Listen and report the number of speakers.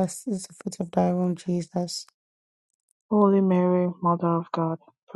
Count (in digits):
2